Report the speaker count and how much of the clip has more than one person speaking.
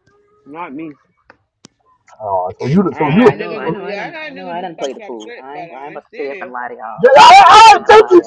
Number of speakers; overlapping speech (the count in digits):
3, about 58%